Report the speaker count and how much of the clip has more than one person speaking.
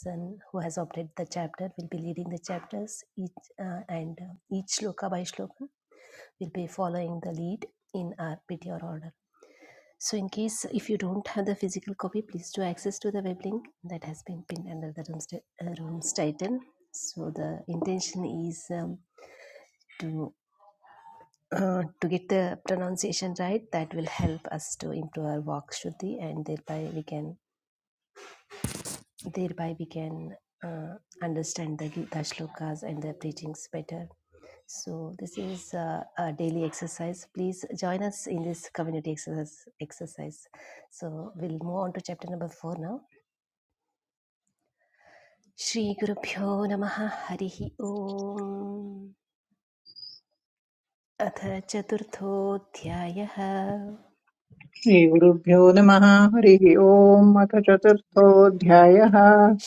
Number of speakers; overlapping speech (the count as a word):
two, no overlap